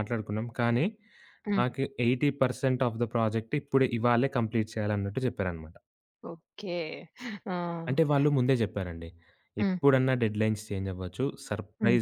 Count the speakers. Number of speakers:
2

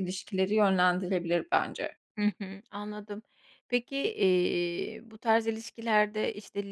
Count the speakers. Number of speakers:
2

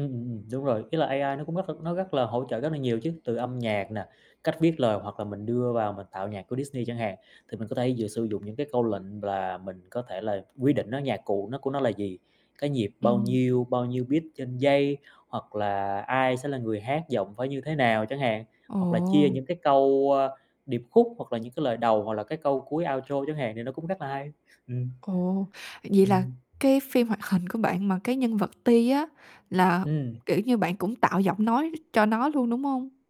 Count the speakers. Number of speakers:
2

